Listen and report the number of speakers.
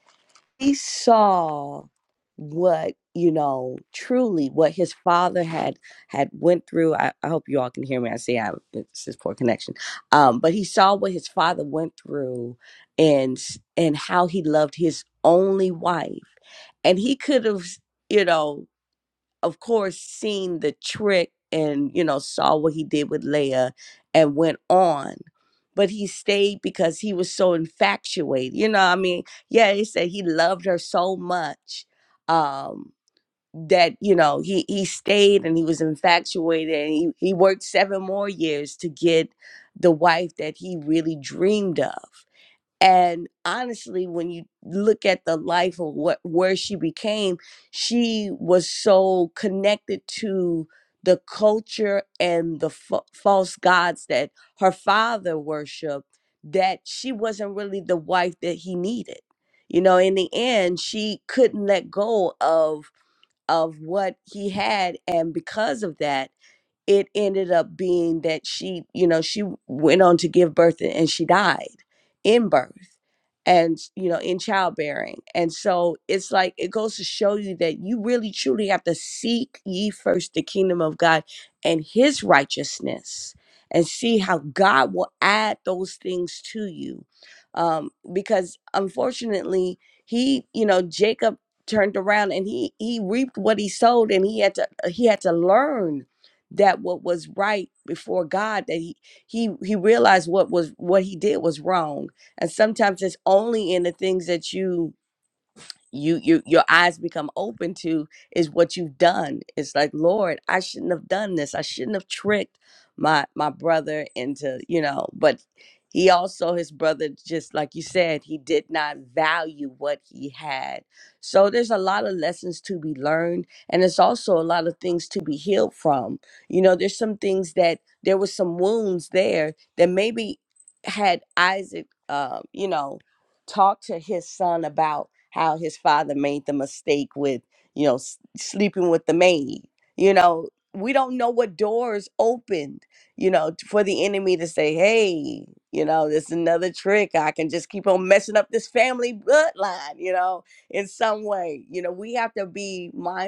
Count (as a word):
one